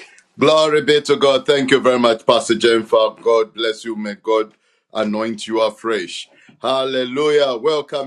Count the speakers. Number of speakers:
one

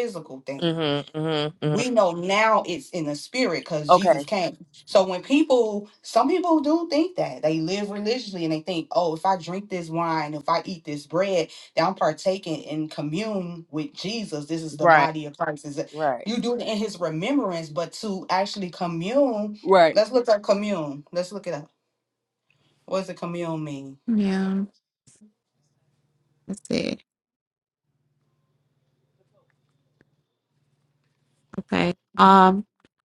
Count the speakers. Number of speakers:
three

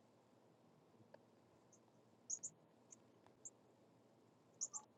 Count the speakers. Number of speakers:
zero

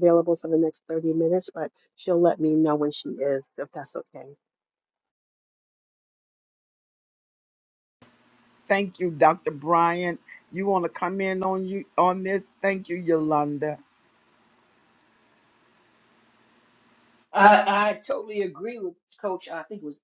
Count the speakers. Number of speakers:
three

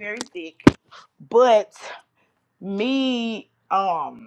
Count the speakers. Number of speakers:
one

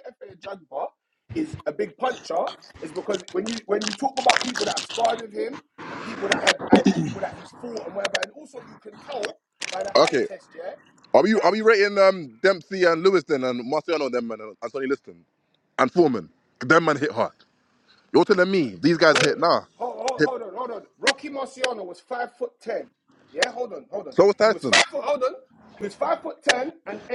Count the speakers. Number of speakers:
two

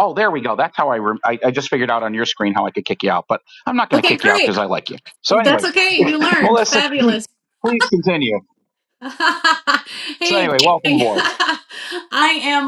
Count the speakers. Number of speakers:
two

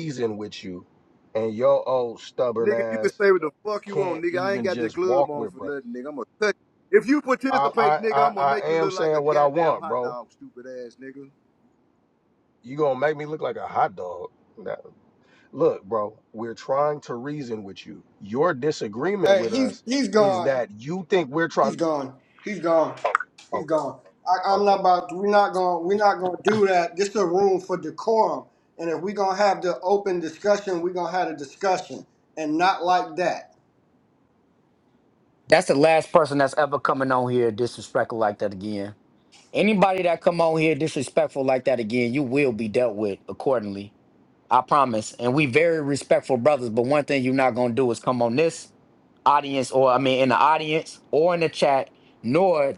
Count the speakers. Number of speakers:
four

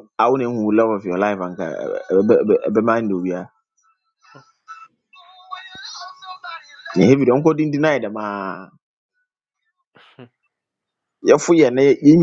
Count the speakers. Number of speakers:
one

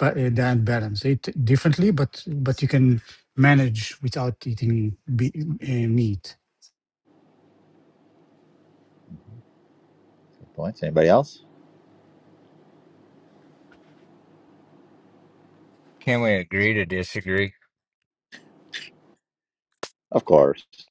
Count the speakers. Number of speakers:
three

